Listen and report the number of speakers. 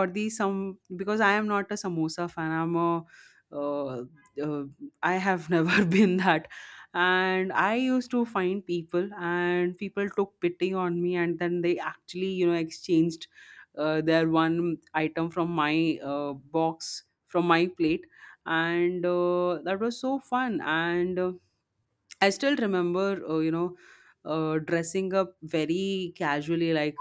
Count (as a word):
one